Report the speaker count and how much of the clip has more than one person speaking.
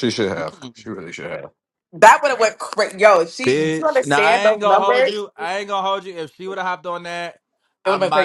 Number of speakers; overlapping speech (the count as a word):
three, about 24%